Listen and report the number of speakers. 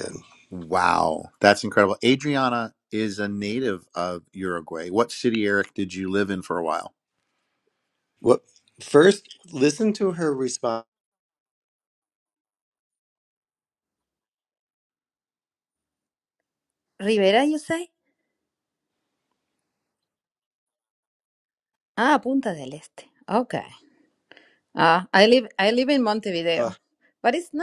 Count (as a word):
three